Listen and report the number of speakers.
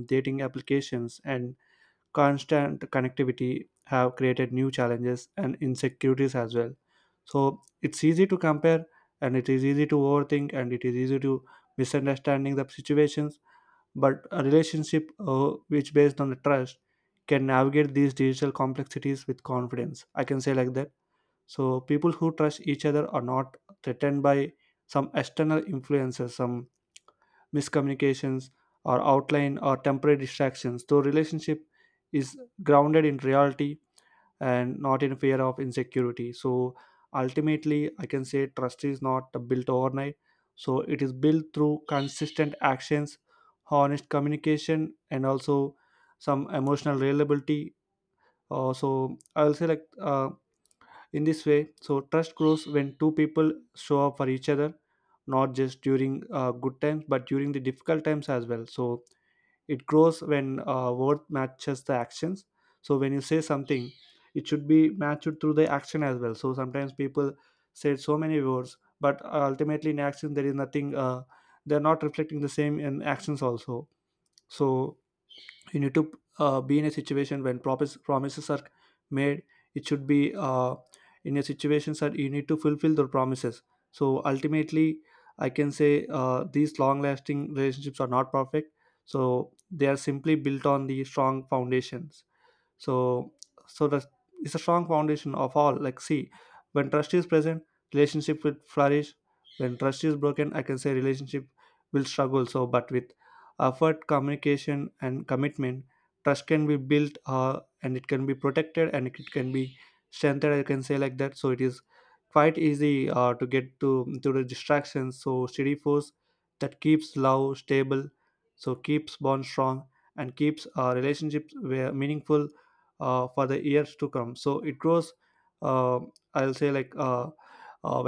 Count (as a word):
one